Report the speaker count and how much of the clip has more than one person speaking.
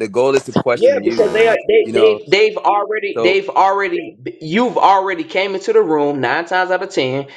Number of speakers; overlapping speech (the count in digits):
2, about 15%